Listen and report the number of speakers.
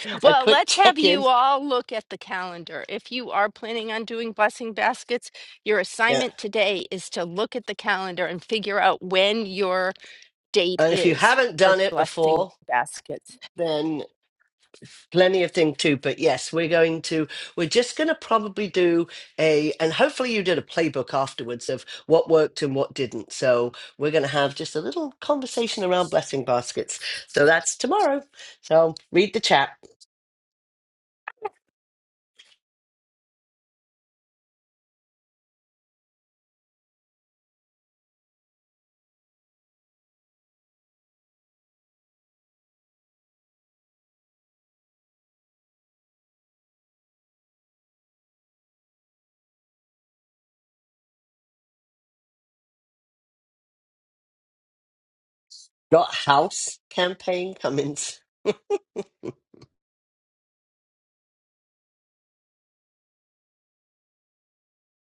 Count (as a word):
two